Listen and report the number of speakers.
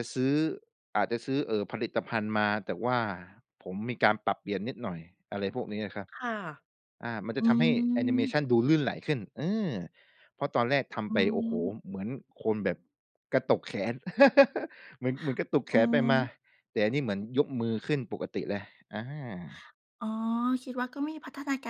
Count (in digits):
2